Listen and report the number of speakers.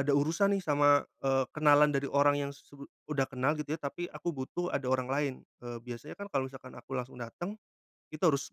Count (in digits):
1